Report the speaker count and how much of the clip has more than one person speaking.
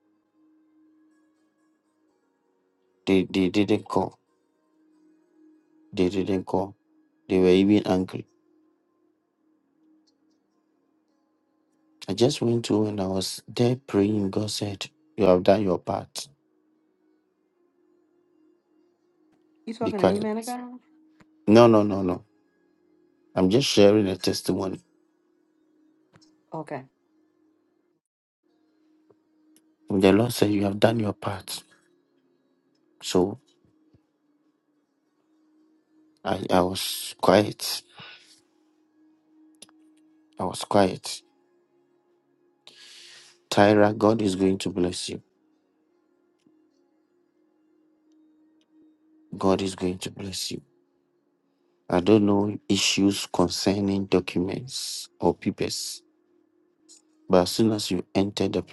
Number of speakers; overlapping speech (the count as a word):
two, about 1%